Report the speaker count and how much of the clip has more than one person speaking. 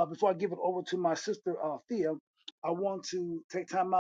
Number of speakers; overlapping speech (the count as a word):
one, no overlap